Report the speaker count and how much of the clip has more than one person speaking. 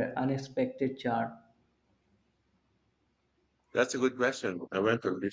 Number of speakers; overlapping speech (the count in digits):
2, no overlap